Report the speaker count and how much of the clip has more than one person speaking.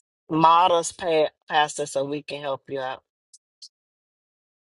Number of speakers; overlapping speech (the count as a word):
one, no overlap